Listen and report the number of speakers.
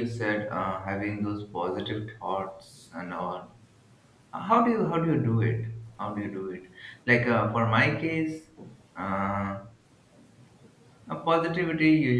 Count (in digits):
1